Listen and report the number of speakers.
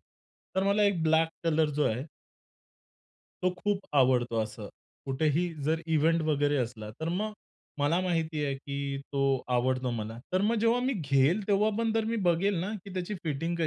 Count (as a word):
one